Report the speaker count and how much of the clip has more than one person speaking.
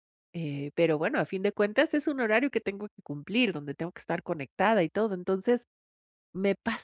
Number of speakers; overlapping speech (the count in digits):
1, no overlap